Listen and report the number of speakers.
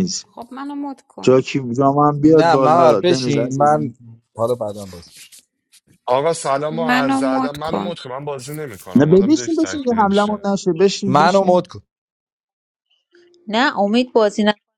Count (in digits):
5